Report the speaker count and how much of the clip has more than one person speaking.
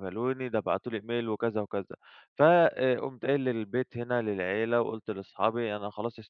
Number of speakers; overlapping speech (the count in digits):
1, no overlap